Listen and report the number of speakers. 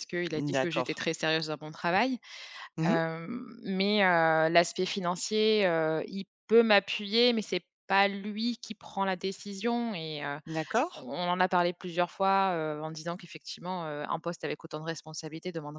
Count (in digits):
2